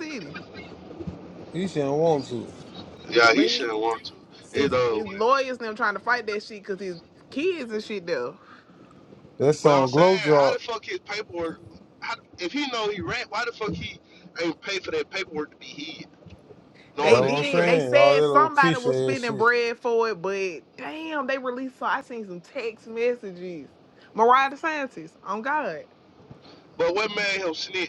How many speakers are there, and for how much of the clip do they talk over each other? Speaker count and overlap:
3, about 16%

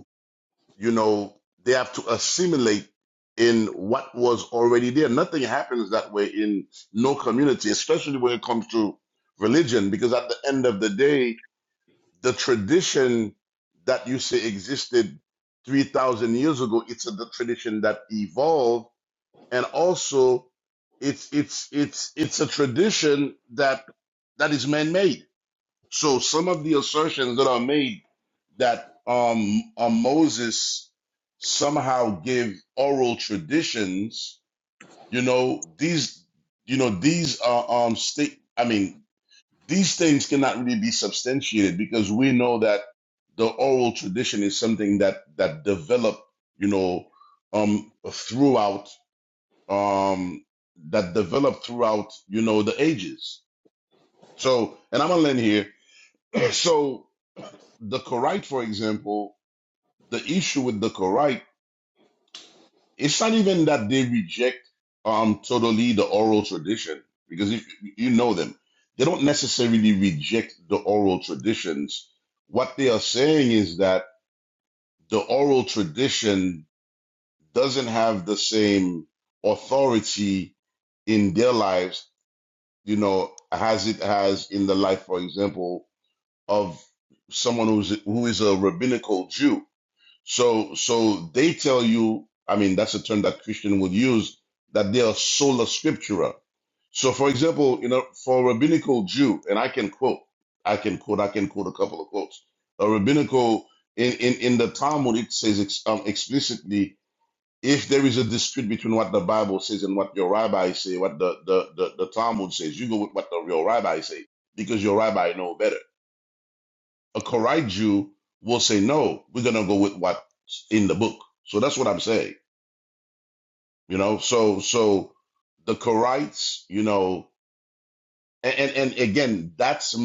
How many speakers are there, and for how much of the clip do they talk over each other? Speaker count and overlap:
1, no overlap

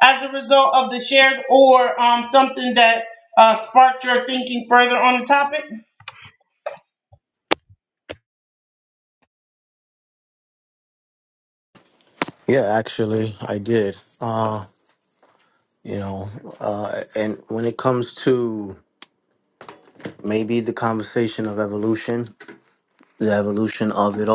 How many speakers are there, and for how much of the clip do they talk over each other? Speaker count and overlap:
2, no overlap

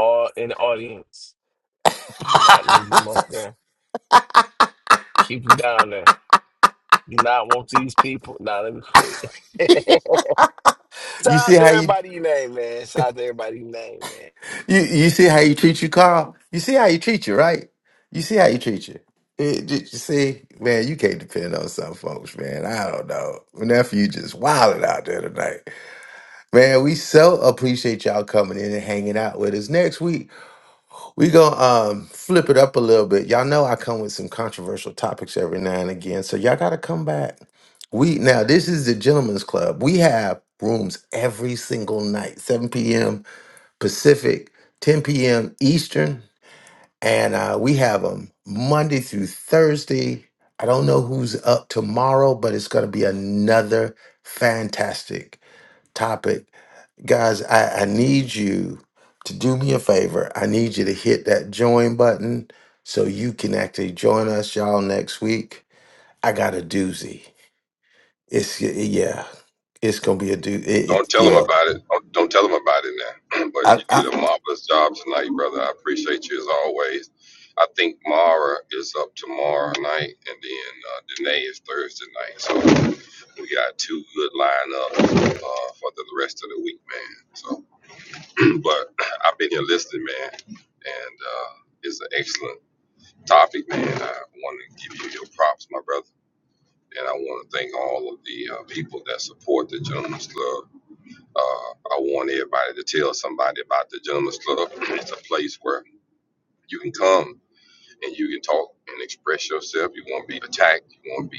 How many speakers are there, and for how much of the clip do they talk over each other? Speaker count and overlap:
3, about 1%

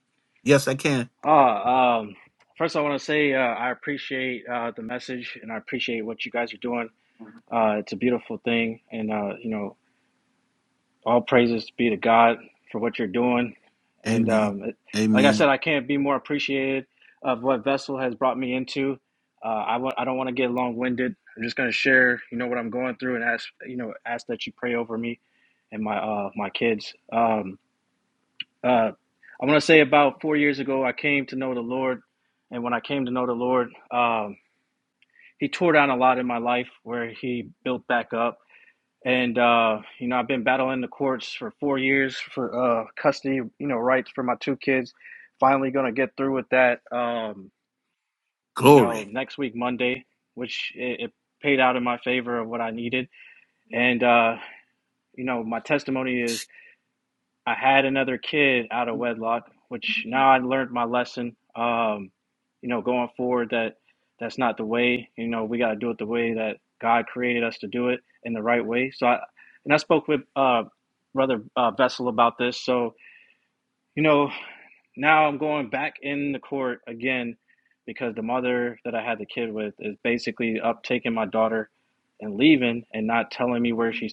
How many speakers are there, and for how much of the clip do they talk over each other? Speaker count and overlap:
2, about 1%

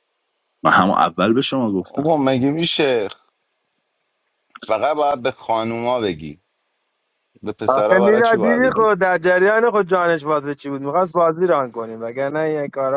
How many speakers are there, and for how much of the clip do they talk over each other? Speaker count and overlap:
3, about 11%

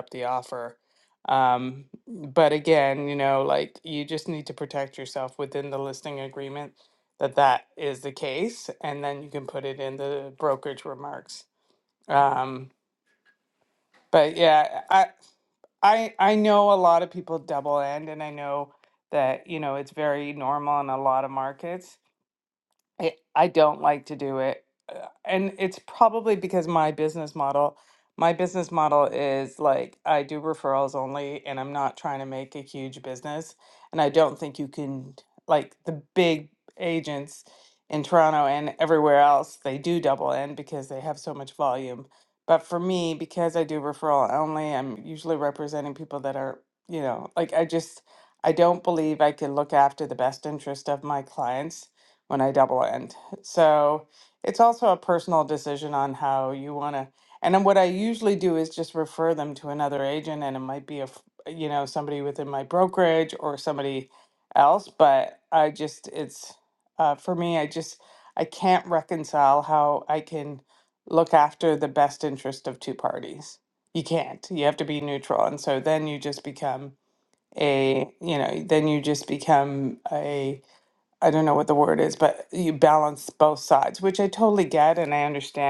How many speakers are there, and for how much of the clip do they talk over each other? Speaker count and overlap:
1, no overlap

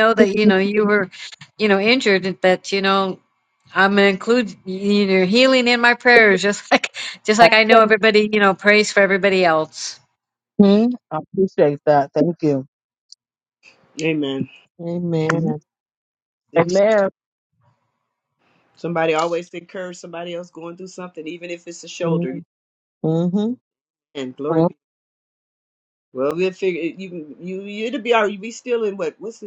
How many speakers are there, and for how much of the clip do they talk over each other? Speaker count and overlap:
4, about 4%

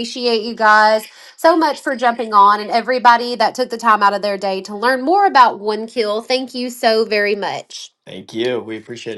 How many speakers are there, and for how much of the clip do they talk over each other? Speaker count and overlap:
2, no overlap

